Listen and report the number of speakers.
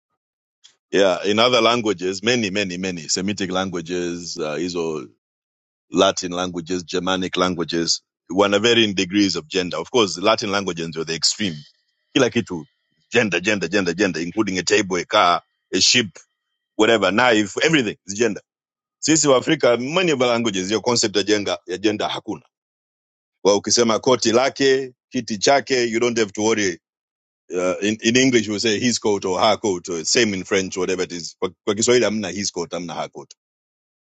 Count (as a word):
one